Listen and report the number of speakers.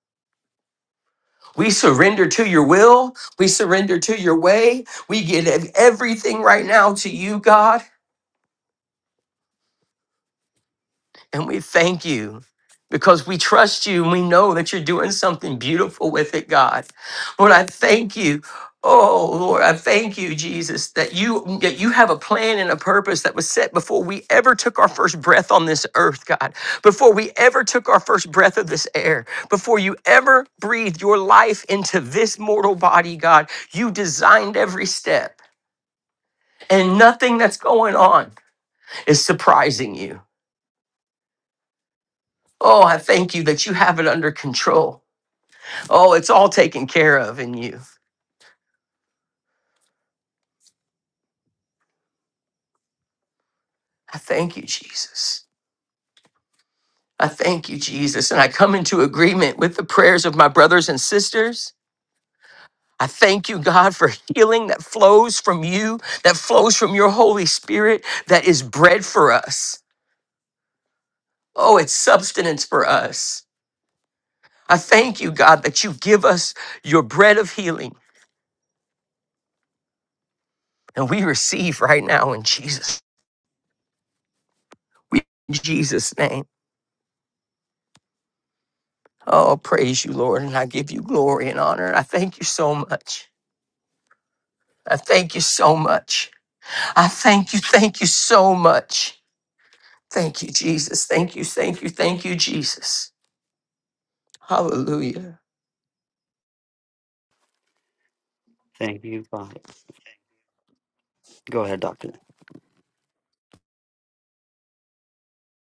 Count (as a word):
two